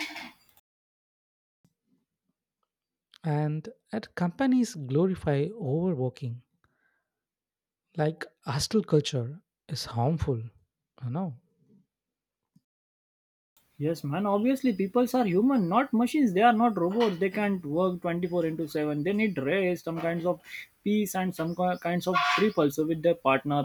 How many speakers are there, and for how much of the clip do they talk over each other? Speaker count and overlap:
two, no overlap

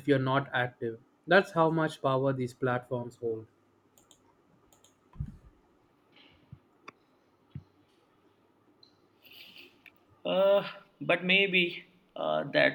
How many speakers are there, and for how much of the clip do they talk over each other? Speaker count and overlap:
two, no overlap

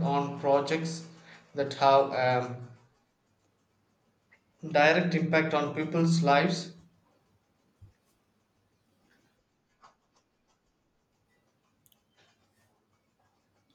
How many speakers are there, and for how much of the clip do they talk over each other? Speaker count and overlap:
one, no overlap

